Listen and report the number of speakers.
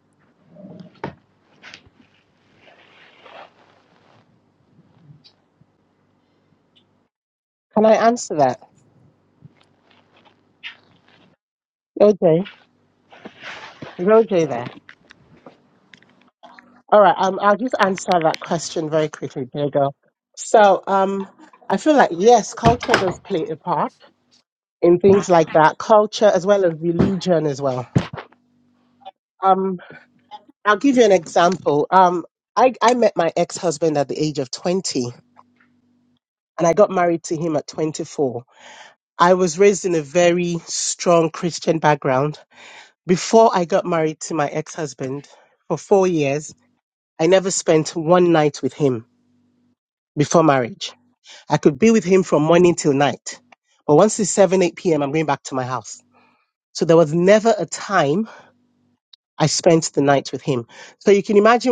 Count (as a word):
one